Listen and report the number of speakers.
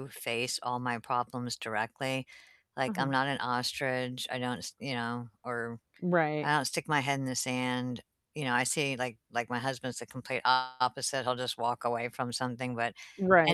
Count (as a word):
two